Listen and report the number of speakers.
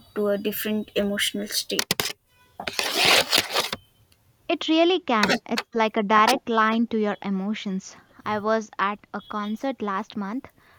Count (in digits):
2